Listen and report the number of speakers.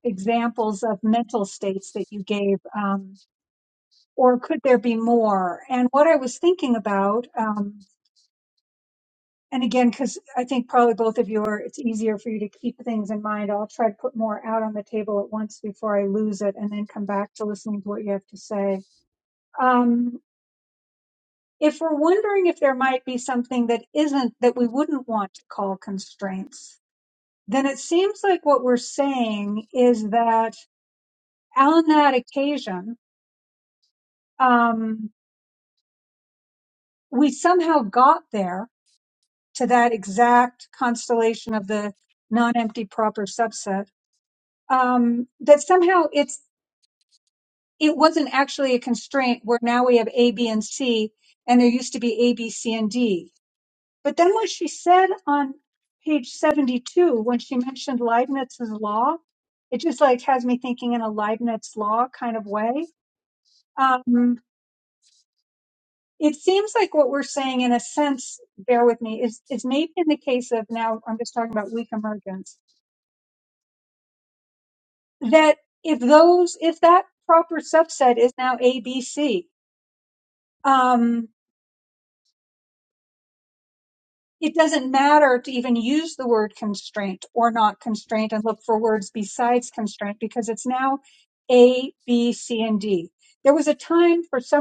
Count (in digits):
1